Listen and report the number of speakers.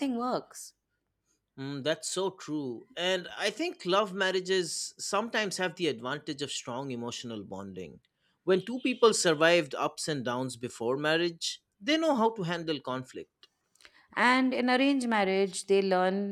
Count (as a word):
two